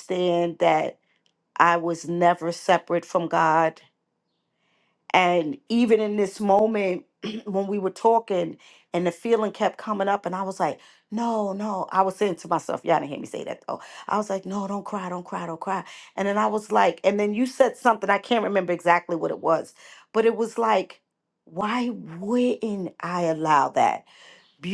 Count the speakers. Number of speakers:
one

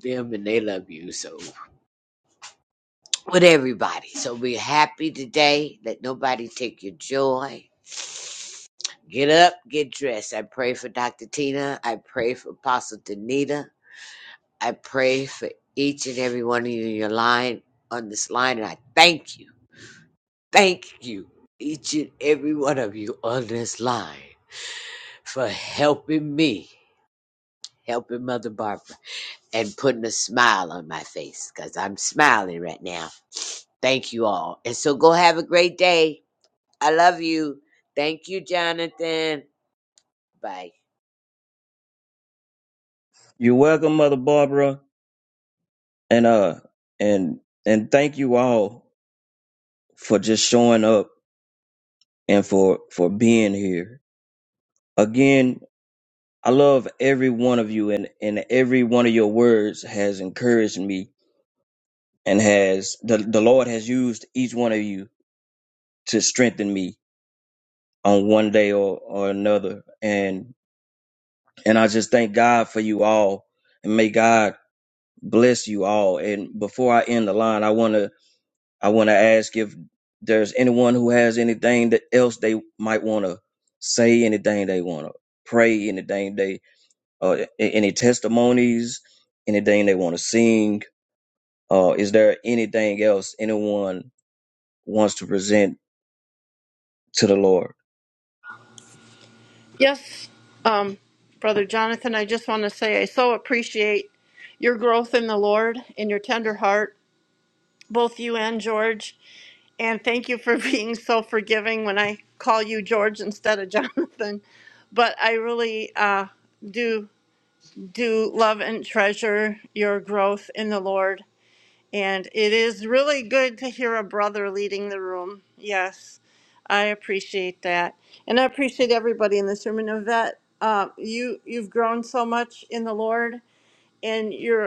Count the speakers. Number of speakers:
three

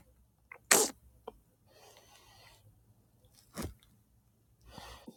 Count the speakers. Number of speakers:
zero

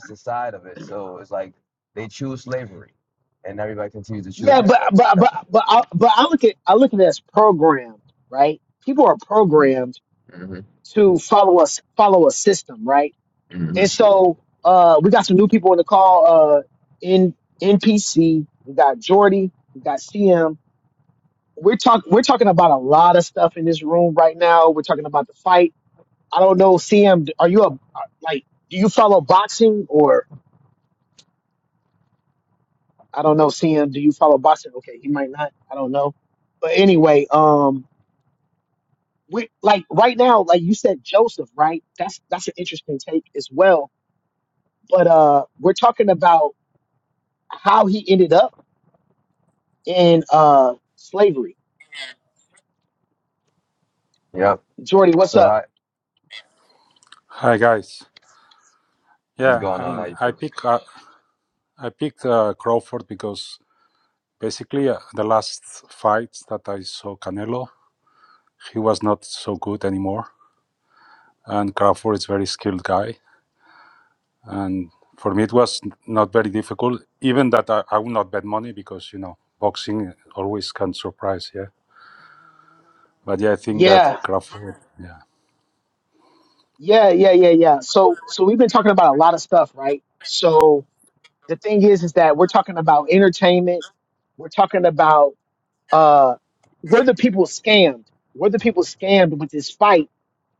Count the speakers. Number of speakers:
three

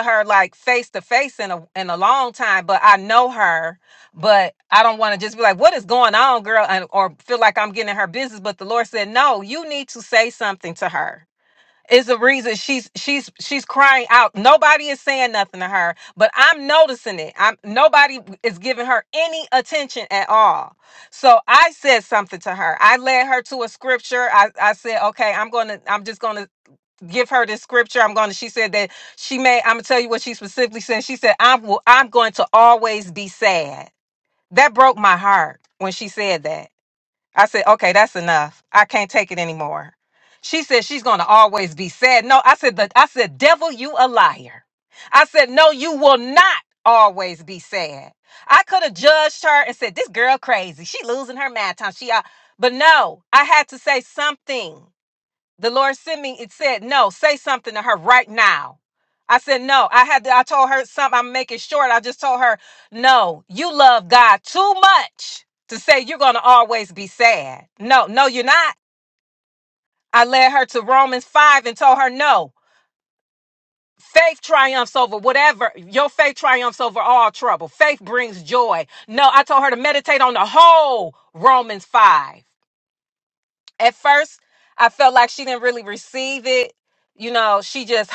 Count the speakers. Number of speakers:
one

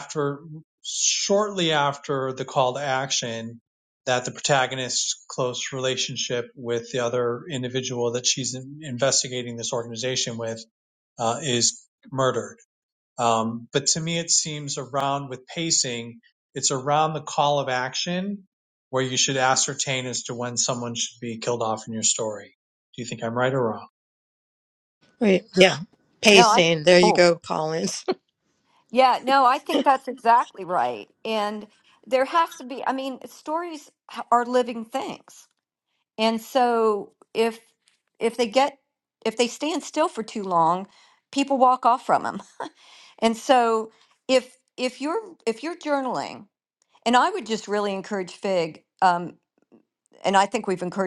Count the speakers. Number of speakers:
three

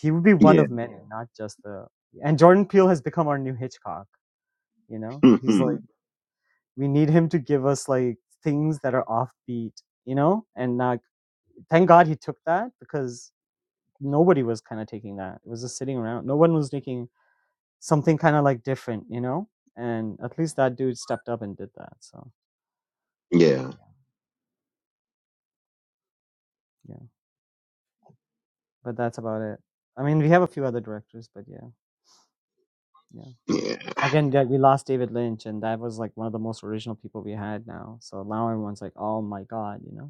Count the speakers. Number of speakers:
two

